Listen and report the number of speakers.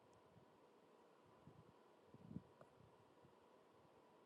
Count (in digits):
0